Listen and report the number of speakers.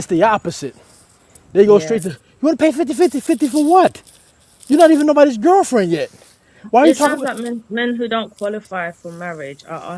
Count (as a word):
two